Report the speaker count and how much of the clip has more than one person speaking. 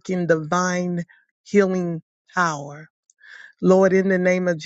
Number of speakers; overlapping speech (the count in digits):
1, no overlap